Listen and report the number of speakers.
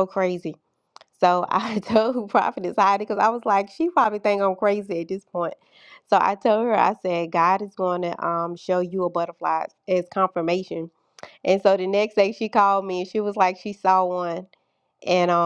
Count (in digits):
1